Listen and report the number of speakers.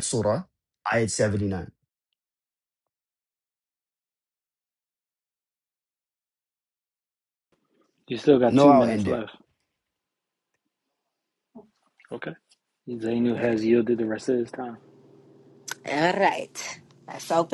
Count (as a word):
three